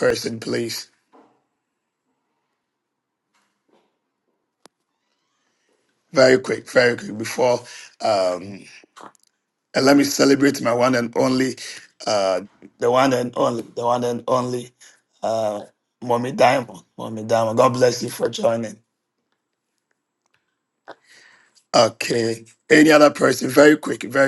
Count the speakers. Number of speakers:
one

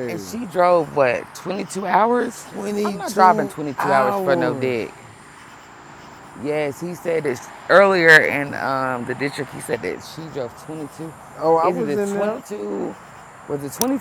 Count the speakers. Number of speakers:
two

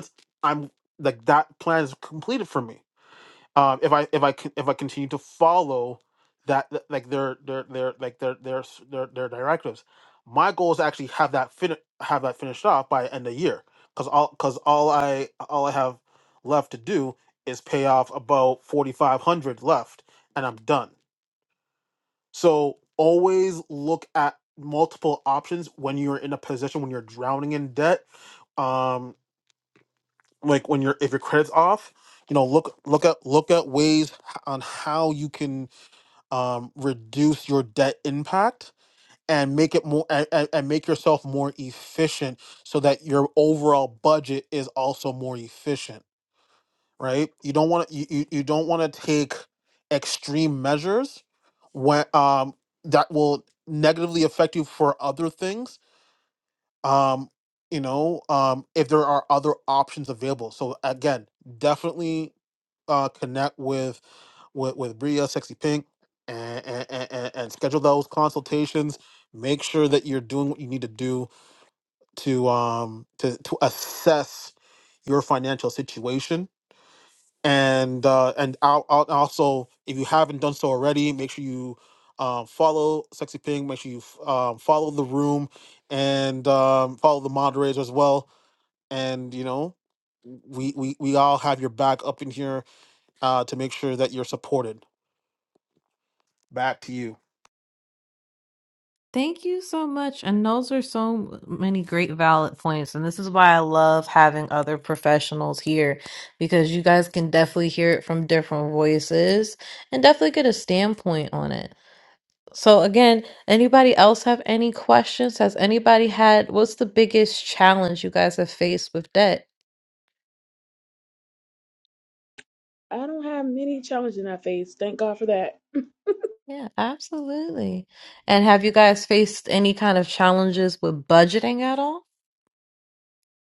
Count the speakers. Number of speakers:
three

